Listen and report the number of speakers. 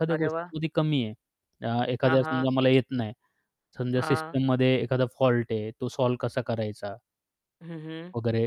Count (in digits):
2